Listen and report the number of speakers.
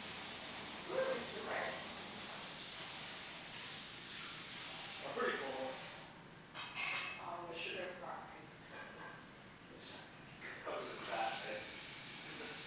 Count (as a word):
two